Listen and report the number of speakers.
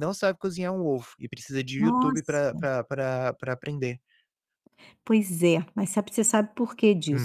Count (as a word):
two